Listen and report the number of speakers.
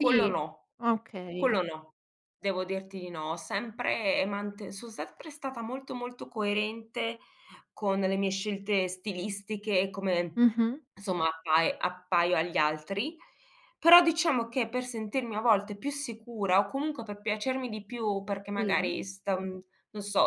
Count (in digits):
2